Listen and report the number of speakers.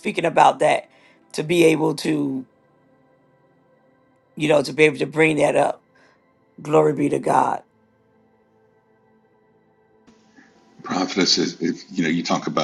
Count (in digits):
2